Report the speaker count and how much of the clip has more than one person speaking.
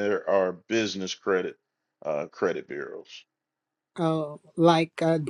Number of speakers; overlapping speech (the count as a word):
two, no overlap